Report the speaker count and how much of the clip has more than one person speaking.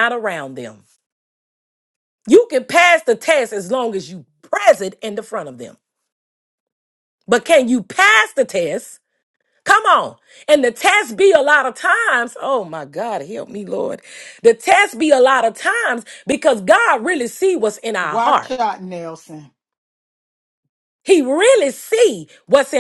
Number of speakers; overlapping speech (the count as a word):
two, about 2%